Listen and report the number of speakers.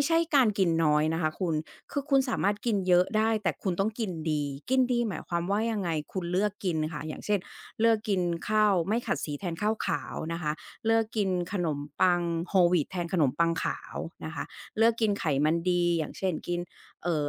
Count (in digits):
1